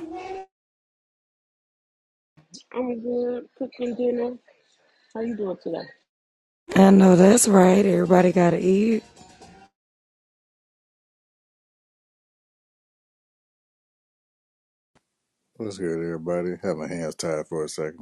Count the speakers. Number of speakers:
3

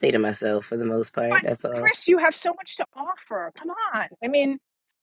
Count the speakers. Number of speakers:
2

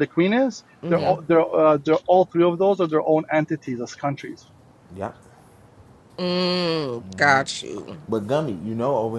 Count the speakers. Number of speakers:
3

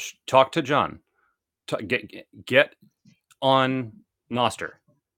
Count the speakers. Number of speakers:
1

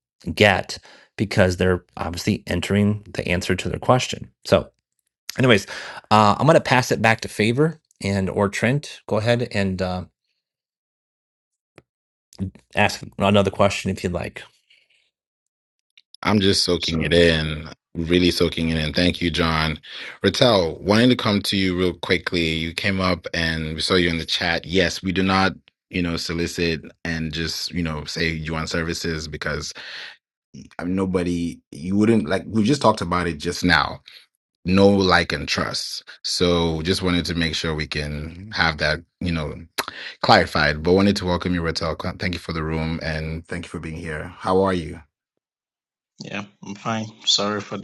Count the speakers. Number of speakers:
3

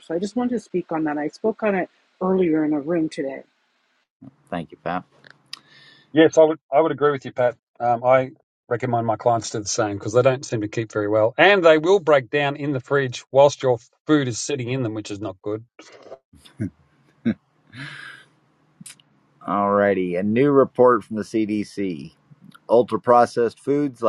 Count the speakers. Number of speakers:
3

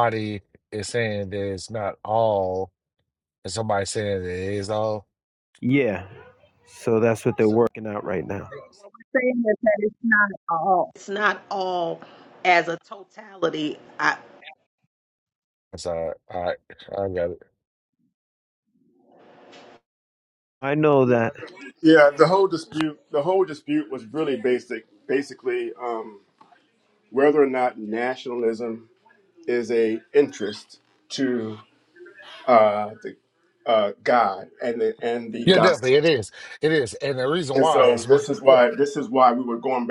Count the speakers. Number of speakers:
4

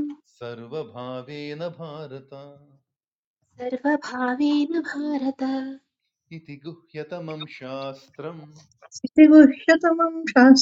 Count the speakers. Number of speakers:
3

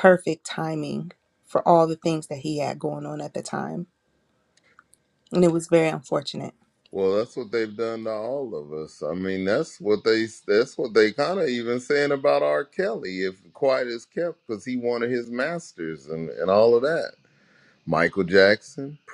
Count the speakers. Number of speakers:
2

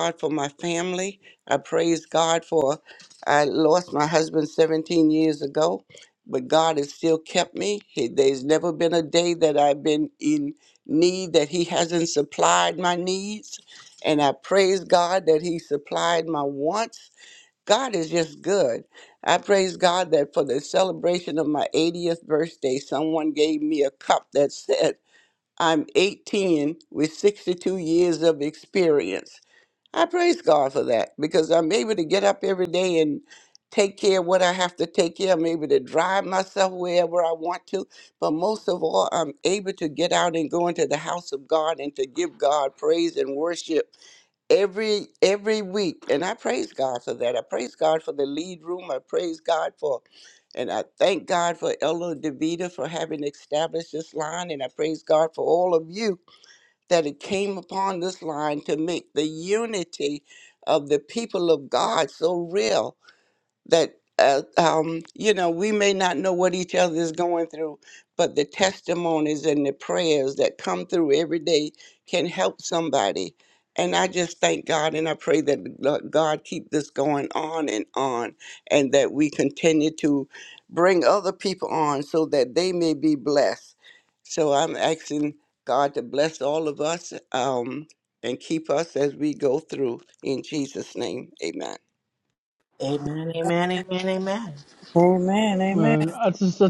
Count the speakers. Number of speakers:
4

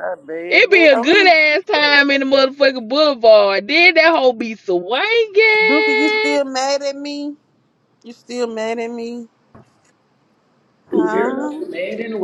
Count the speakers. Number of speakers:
3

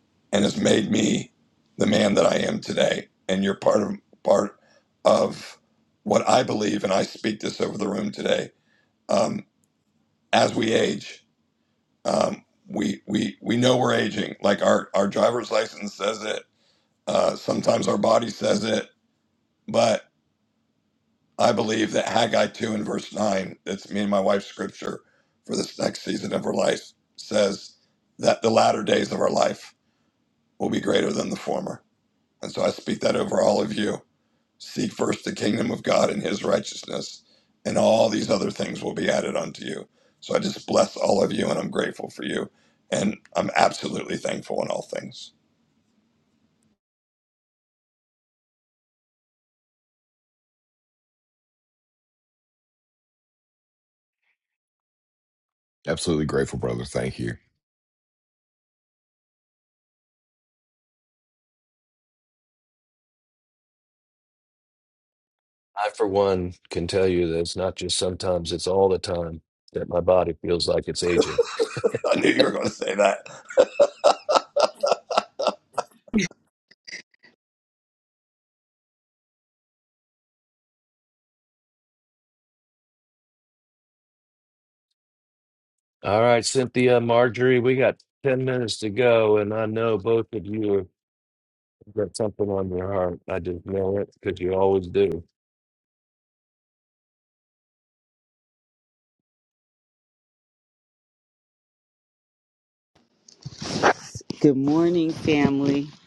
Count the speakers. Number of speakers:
4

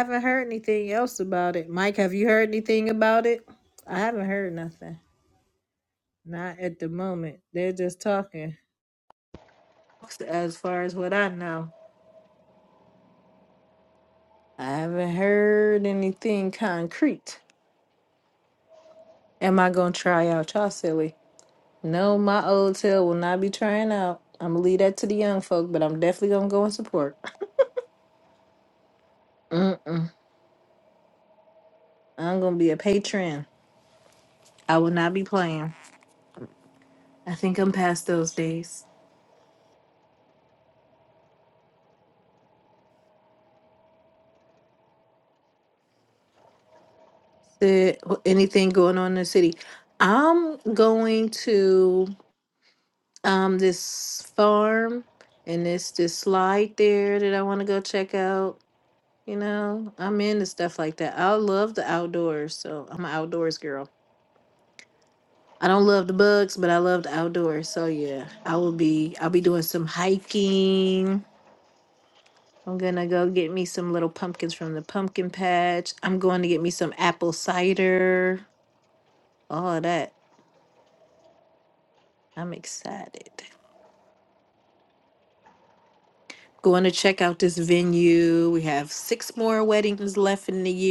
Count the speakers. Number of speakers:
1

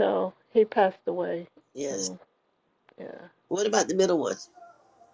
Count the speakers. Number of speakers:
2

